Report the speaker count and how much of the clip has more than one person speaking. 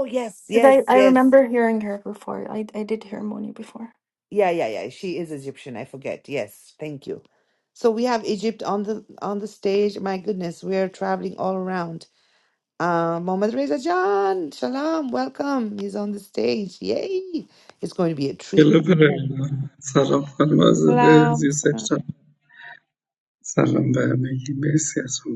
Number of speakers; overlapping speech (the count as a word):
three, about 5%